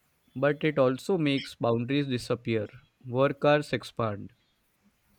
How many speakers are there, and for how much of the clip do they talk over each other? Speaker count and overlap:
one, no overlap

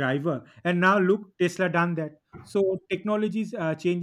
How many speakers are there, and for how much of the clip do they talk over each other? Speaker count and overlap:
one, no overlap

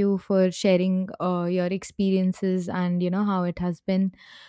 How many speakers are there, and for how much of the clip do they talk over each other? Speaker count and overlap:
one, no overlap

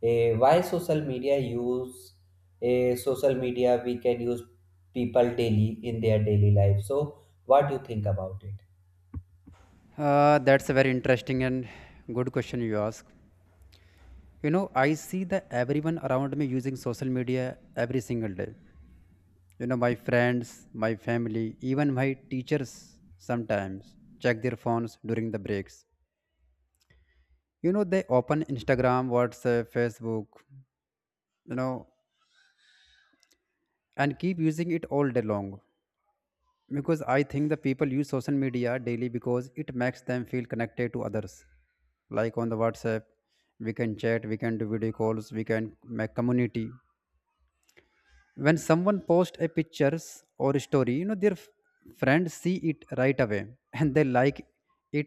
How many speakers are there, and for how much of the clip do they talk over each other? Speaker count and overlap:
two, no overlap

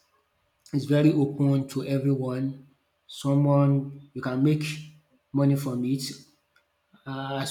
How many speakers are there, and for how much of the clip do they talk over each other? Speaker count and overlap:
one, no overlap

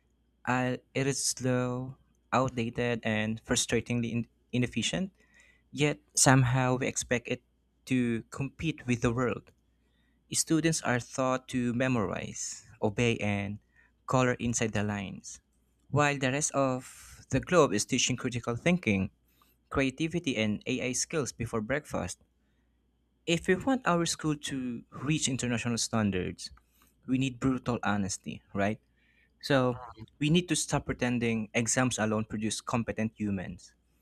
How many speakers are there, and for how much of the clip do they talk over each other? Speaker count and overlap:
one, no overlap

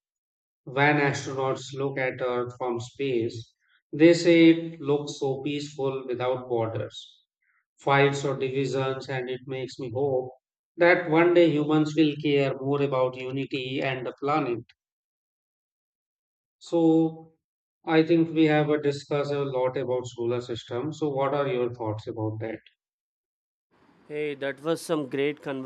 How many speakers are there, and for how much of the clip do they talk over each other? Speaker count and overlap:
two, no overlap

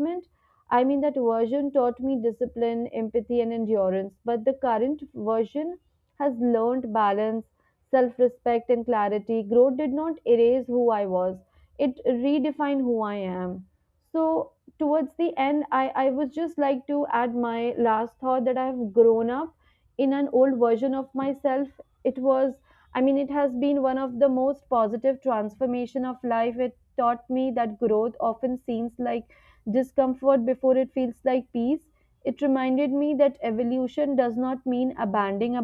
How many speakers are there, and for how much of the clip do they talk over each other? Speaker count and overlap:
one, no overlap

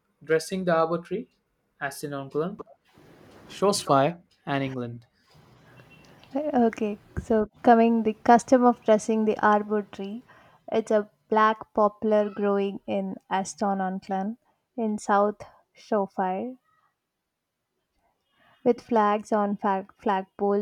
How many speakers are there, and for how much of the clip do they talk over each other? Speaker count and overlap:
two, no overlap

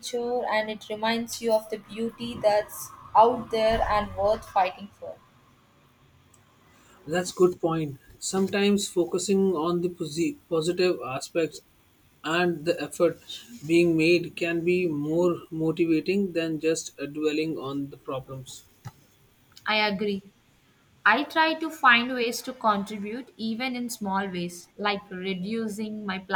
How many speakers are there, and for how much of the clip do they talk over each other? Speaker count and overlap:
two, no overlap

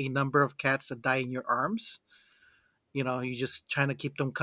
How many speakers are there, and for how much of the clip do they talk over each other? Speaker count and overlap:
one, no overlap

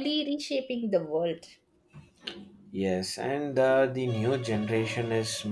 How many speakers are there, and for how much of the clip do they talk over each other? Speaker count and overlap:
two, no overlap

